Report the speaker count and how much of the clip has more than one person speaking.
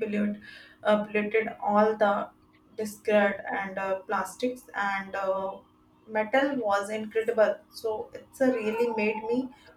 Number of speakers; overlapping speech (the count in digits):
1, no overlap